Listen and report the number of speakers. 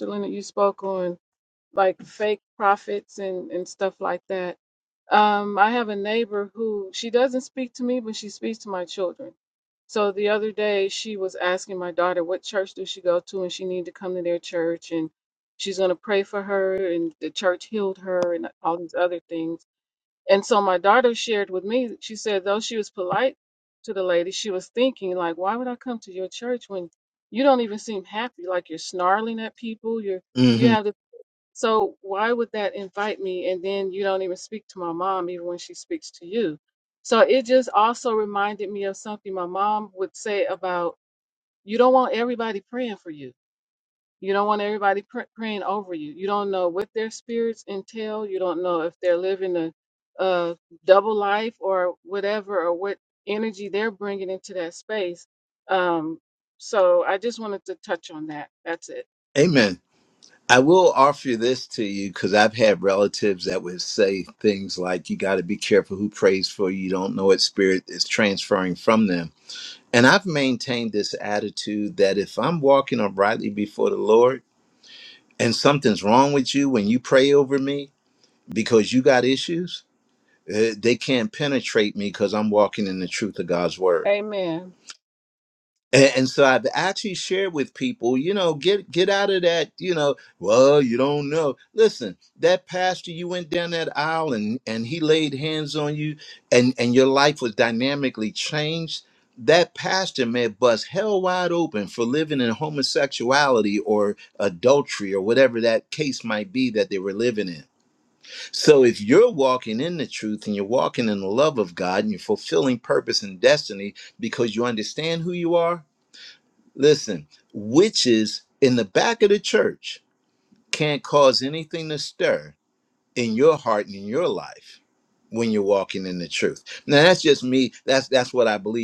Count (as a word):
two